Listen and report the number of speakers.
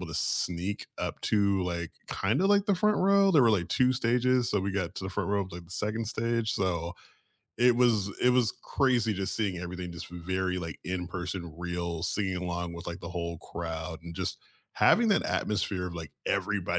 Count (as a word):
one